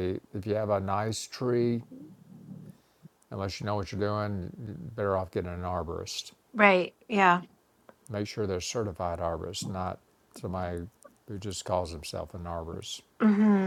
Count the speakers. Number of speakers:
2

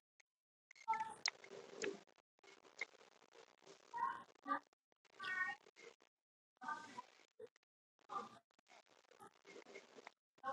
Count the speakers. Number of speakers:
0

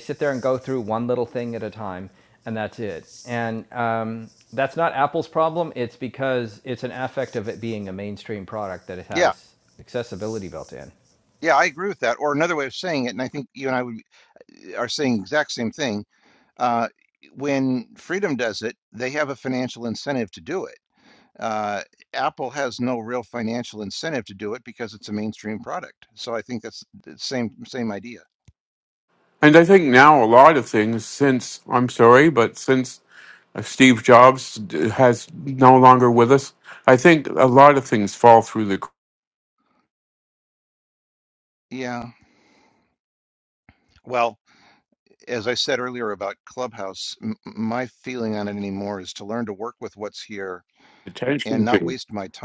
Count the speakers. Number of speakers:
3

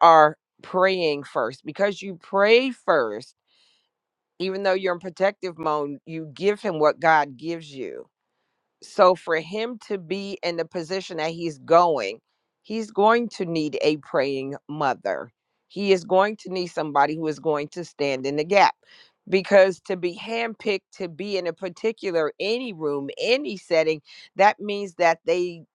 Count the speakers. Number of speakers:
1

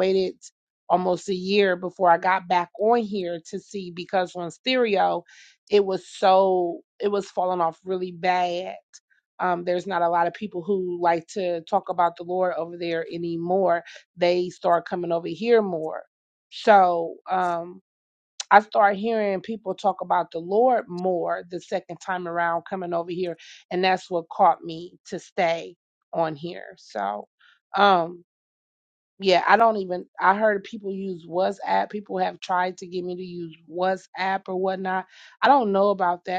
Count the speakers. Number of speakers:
1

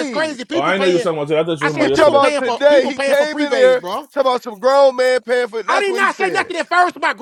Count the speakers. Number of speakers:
3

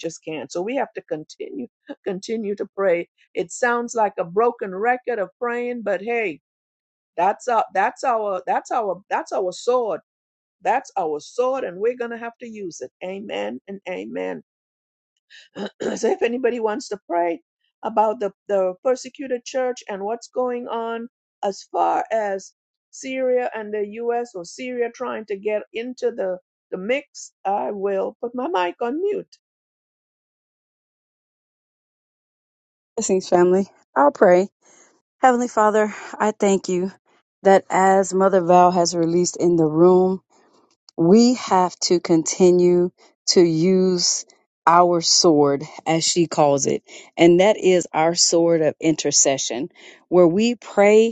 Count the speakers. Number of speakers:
2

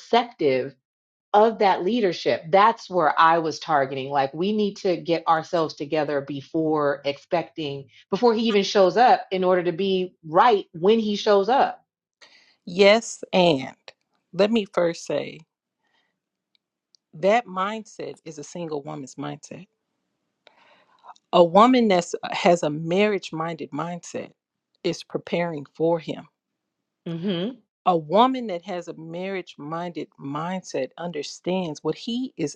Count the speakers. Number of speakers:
2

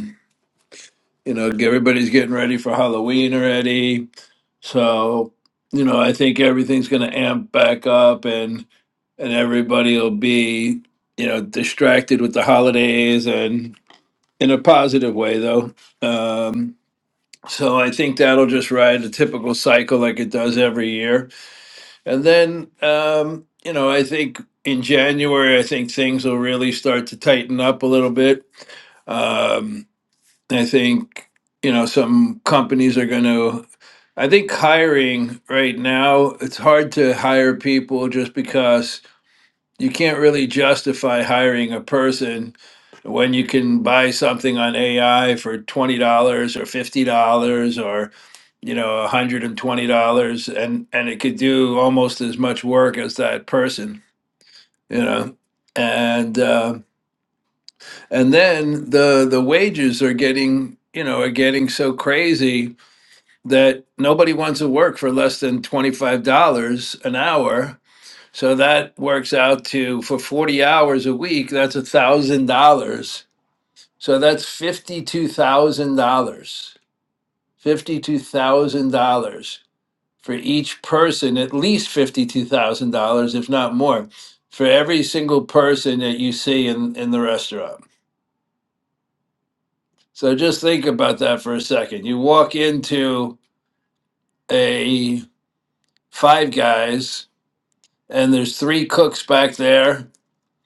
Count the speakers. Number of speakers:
1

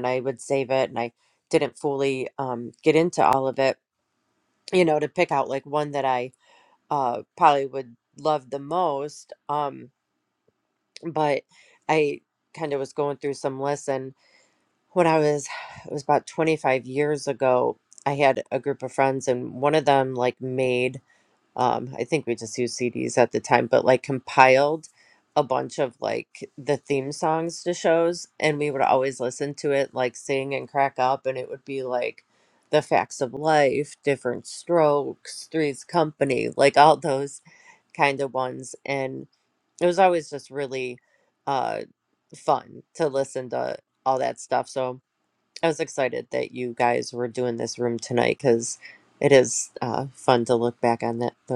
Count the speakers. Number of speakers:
1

